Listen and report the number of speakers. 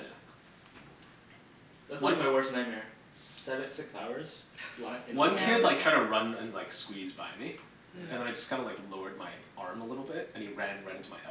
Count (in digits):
2